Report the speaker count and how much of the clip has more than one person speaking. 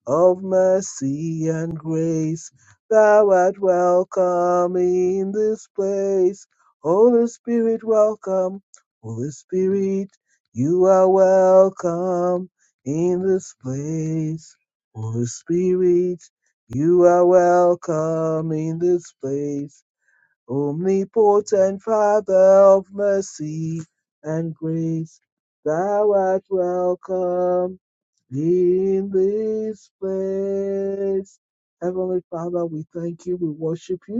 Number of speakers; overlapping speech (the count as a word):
one, no overlap